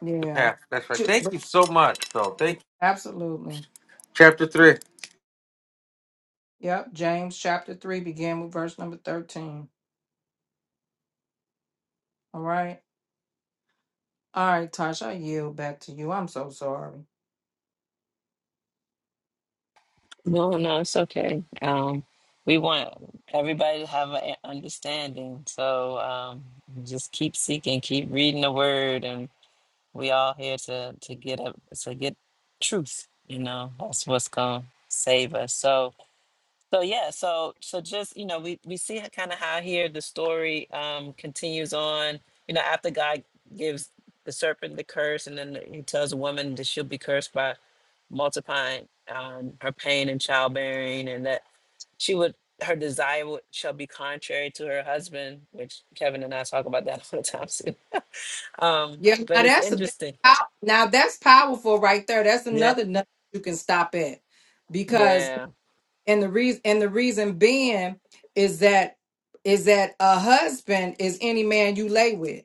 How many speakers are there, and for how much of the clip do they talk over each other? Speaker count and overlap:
3, about 3%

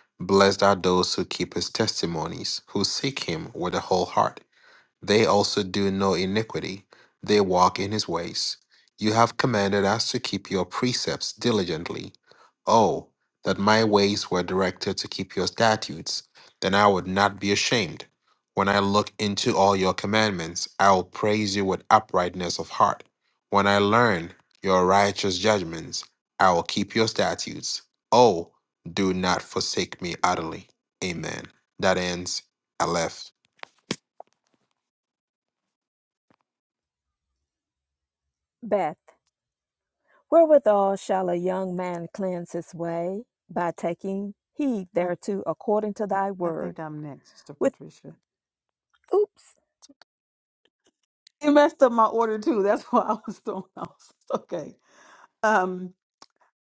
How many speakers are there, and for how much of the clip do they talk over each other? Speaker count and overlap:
3, about 1%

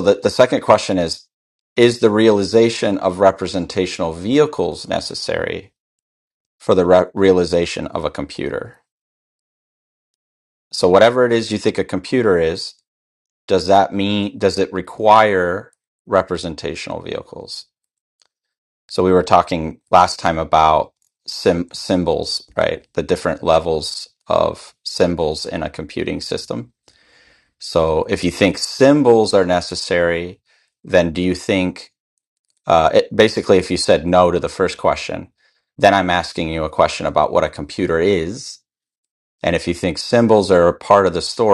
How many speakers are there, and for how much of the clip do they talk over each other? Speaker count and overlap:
1, no overlap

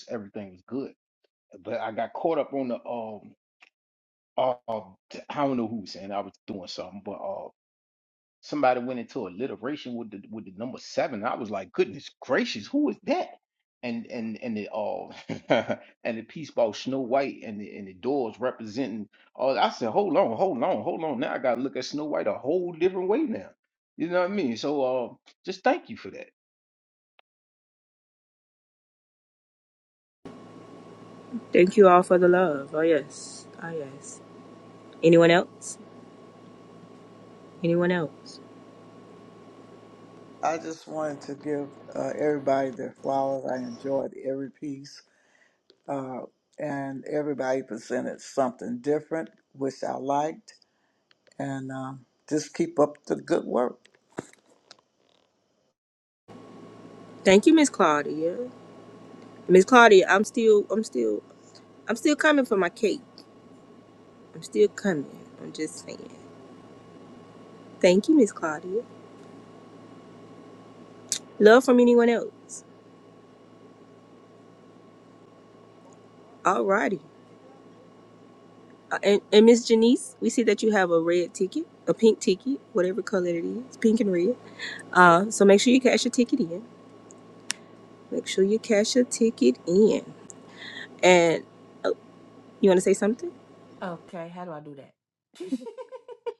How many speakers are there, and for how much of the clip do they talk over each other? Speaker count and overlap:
4, no overlap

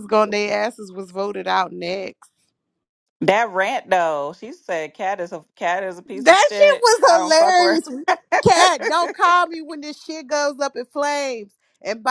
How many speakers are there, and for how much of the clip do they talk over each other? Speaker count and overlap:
2, about 16%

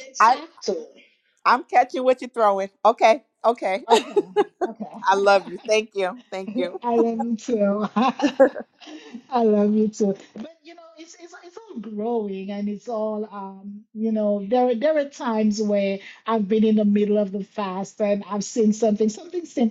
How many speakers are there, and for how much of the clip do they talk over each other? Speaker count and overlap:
2, about 3%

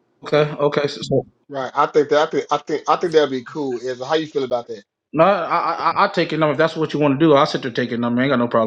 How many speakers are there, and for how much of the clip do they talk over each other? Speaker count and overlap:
2, no overlap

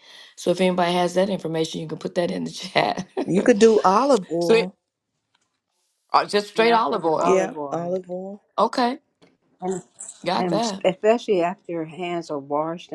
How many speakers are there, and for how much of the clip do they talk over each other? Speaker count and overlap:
3, about 15%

